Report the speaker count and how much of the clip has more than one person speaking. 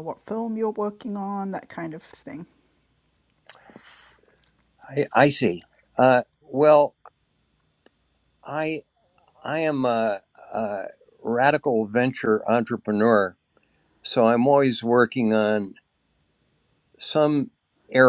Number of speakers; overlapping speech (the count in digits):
2, no overlap